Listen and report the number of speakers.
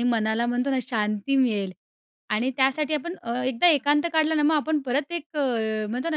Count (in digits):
1